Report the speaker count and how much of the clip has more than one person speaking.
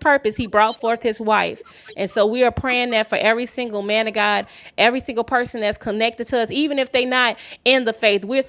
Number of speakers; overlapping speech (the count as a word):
one, no overlap